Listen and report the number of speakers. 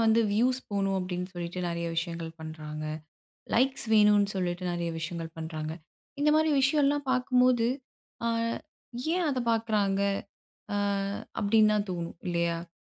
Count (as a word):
one